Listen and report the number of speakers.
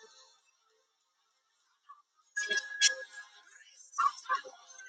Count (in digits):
0